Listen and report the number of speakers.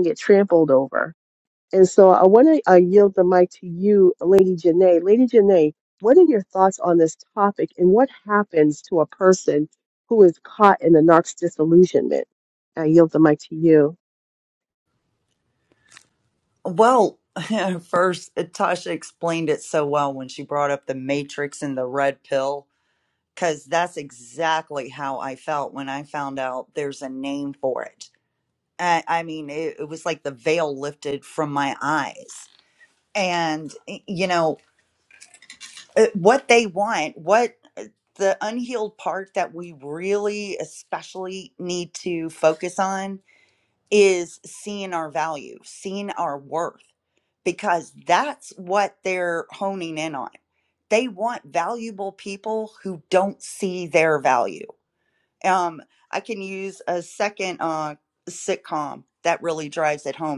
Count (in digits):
2